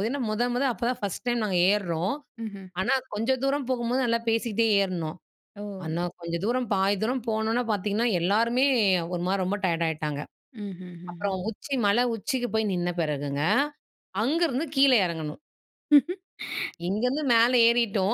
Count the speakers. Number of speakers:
2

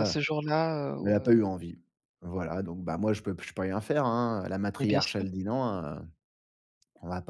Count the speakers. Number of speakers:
2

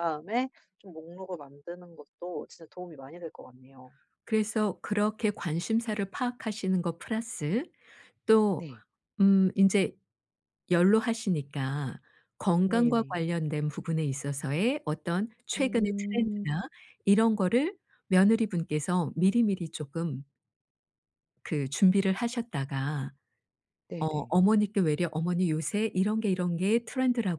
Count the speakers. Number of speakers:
2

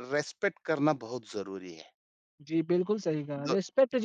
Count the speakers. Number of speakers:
2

